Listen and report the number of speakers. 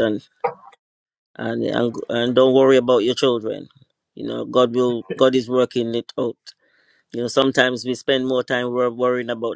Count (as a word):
one